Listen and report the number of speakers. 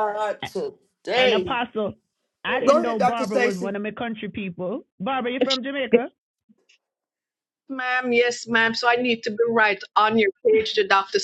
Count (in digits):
3